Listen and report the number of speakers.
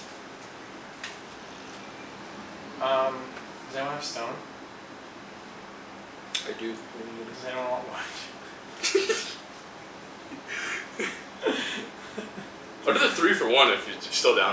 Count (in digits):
2